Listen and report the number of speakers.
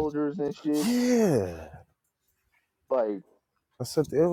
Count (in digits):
2